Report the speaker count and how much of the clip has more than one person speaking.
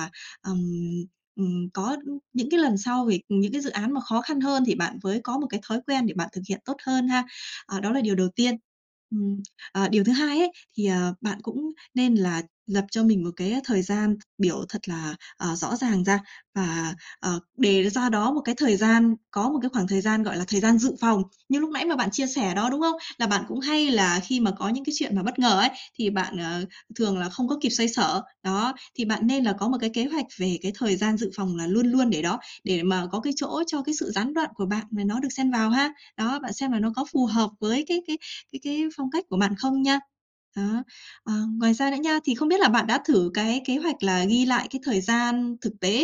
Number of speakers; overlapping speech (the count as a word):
one, no overlap